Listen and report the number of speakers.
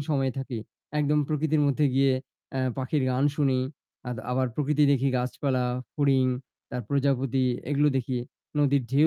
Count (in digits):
1